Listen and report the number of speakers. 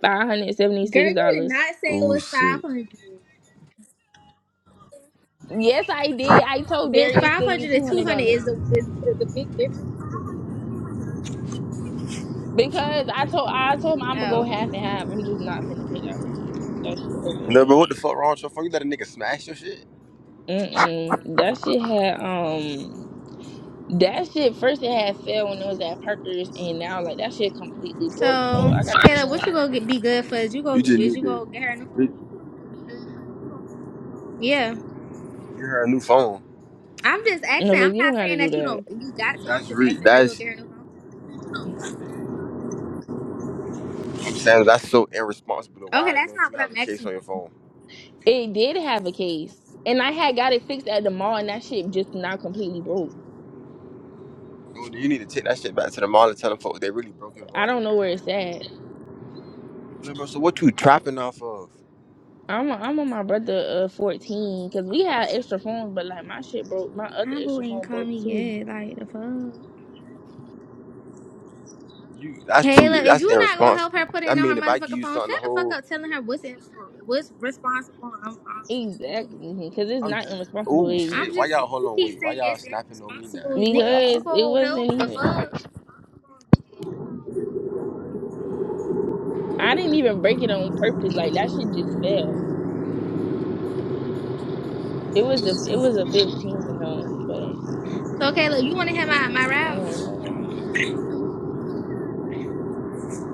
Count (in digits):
3